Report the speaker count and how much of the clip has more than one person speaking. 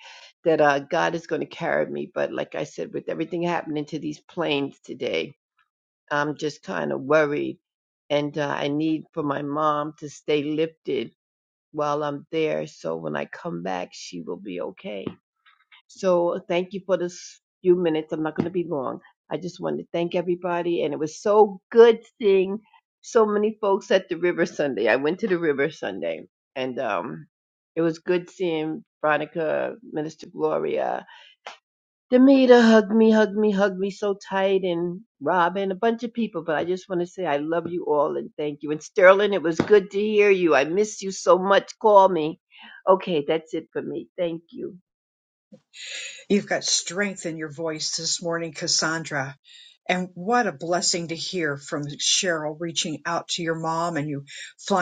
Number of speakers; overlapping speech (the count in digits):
2, no overlap